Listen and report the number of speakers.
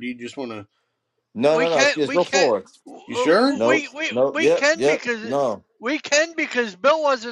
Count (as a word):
three